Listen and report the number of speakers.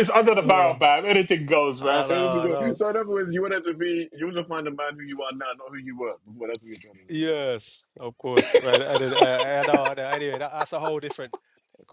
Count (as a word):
three